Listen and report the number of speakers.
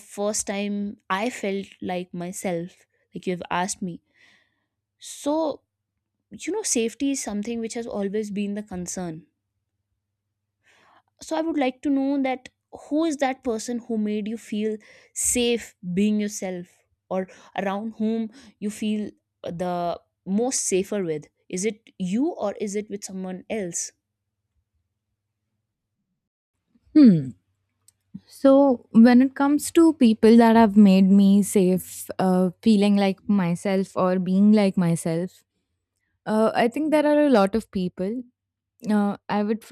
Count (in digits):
2